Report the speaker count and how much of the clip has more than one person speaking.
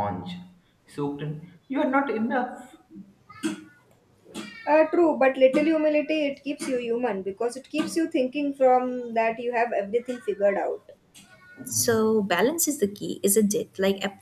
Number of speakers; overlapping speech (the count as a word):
three, no overlap